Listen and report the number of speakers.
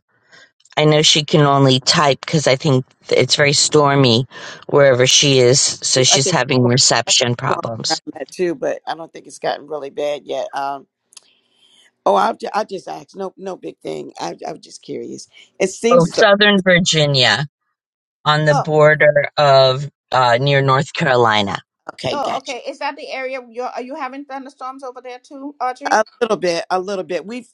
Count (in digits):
3